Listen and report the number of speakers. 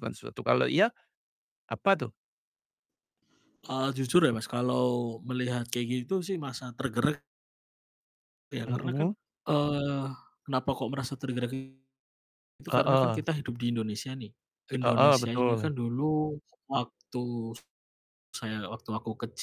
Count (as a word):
two